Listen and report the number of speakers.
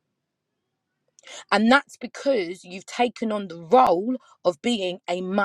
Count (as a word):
one